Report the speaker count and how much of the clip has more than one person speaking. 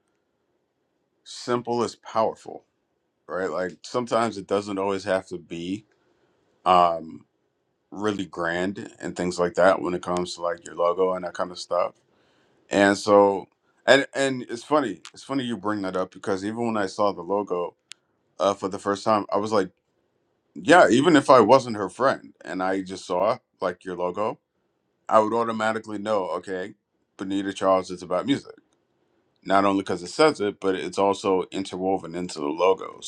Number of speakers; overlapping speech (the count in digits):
1, no overlap